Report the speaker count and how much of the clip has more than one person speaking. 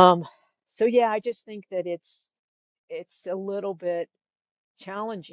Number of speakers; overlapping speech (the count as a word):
one, no overlap